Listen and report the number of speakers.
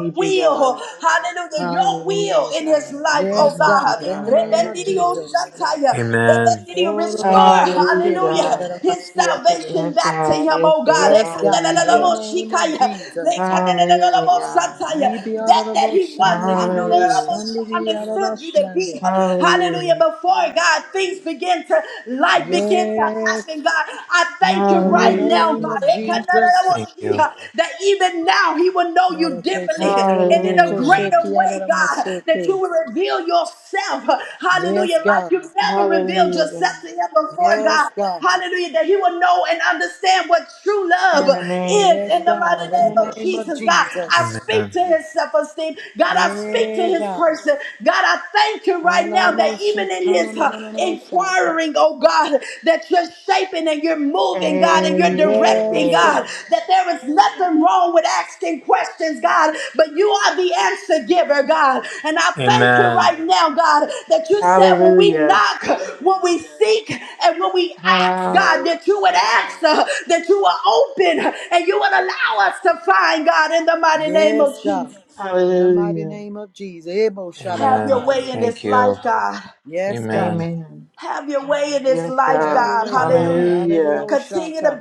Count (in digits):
4